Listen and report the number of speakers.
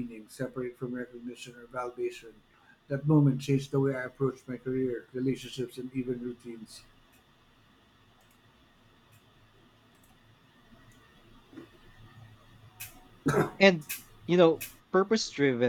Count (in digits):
2